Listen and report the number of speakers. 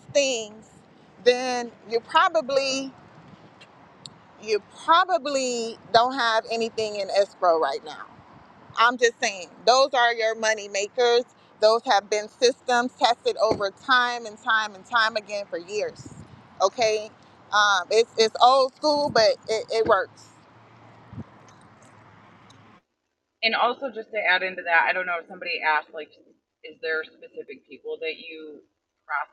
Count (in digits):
2